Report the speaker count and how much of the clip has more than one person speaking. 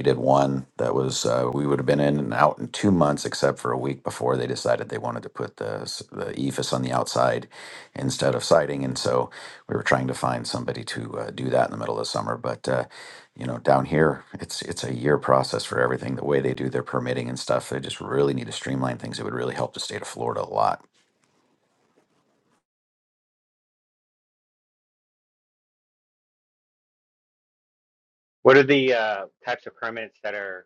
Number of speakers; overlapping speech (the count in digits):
2, no overlap